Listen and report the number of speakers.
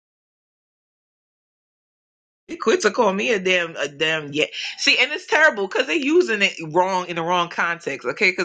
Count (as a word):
one